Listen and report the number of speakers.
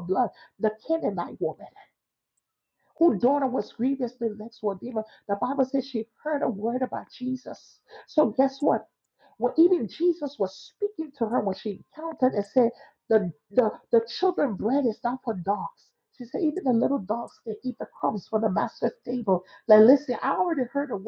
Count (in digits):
1